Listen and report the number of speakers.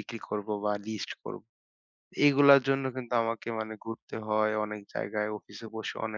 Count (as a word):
one